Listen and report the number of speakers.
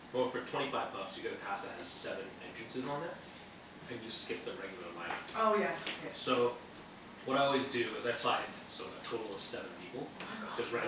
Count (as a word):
two